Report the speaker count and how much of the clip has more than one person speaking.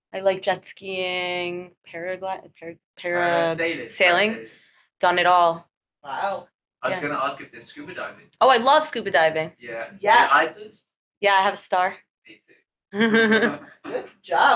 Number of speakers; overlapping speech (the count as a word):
three, about 8%